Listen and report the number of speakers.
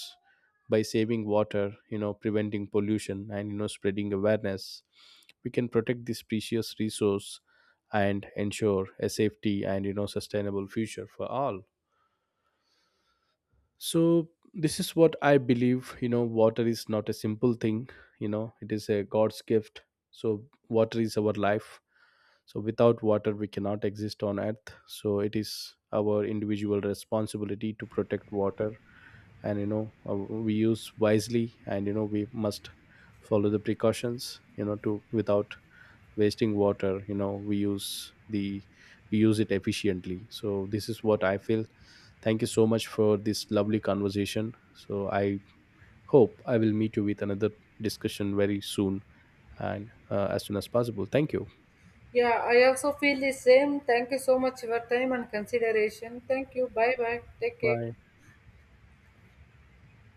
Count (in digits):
2